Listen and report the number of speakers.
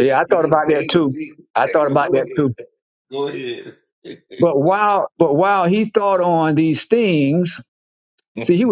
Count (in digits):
2